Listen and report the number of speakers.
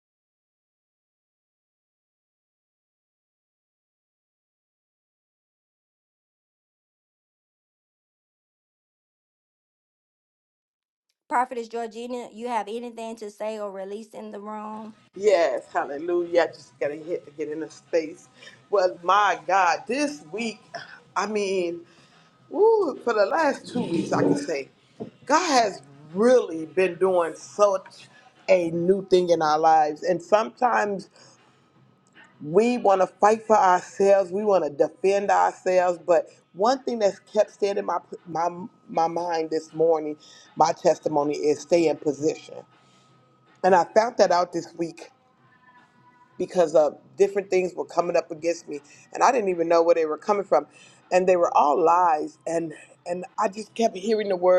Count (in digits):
2